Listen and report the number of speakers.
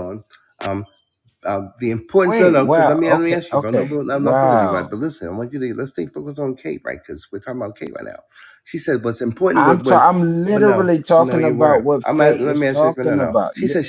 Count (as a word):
two